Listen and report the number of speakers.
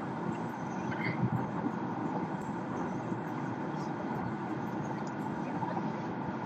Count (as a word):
zero